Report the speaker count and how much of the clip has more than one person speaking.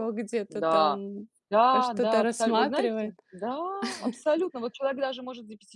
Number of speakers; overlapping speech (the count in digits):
2, about 34%